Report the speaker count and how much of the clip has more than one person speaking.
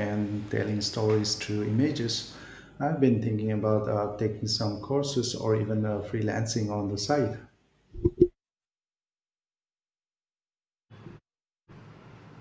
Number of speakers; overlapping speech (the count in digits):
1, no overlap